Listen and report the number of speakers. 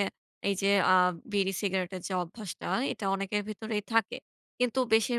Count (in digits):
1